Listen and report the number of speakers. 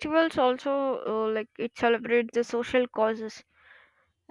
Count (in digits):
1